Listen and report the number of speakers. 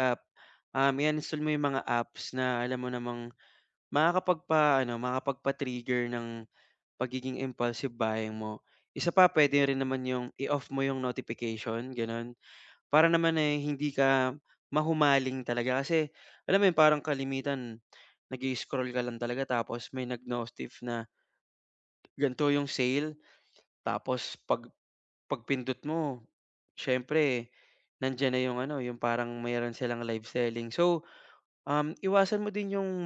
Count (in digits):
1